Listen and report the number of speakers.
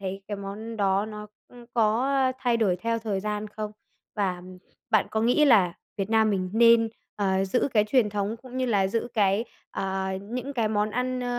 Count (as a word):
one